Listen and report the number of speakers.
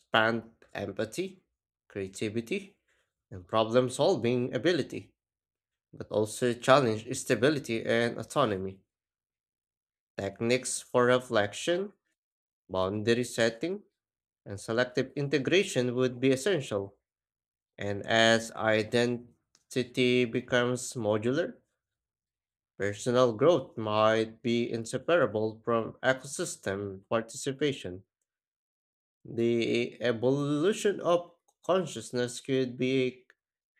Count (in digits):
1